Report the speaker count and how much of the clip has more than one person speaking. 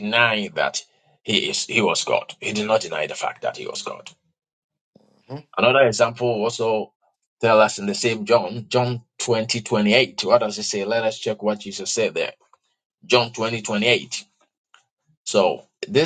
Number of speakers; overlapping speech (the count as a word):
one, no overlap